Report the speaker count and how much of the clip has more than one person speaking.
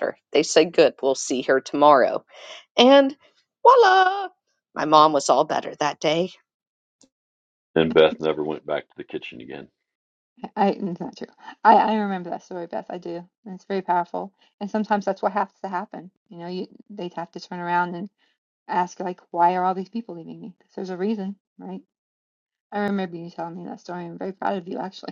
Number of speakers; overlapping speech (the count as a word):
three, no overlap